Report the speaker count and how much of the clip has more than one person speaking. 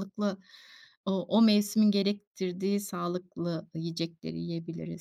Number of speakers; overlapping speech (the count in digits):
1, no overlap